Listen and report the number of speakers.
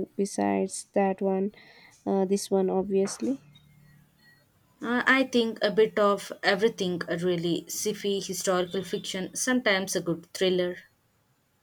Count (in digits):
2